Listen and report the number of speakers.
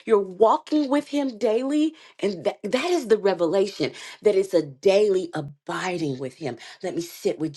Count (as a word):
one